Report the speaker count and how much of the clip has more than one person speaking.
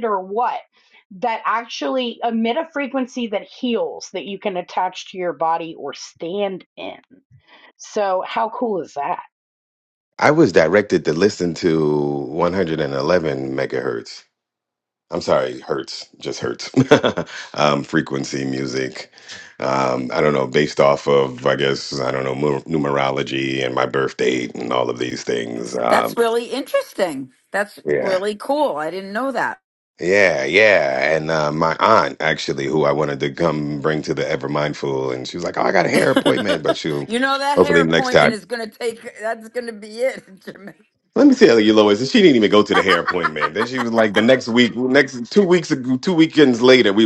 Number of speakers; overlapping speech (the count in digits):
3, about 3%